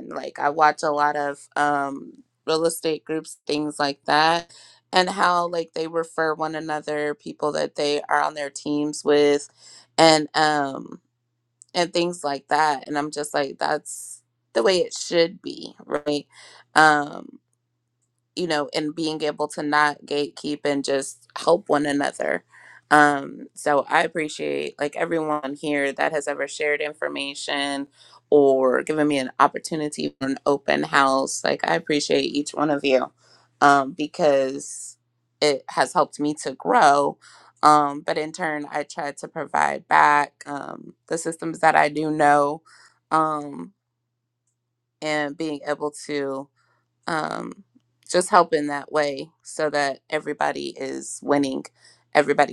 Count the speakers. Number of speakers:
one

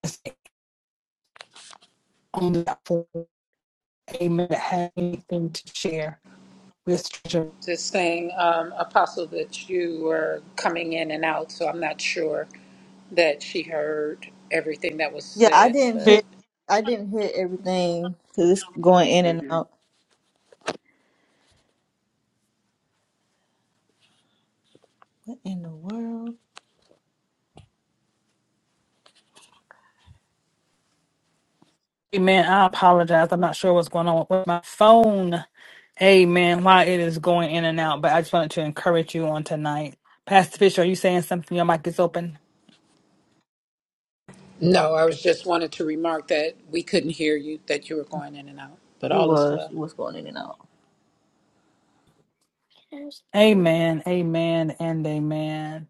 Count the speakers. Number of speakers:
three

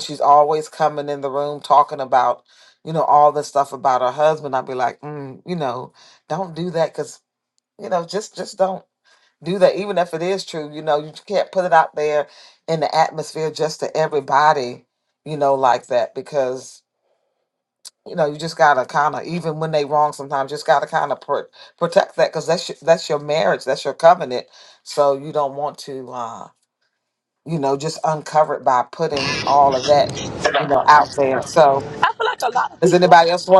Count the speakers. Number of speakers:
two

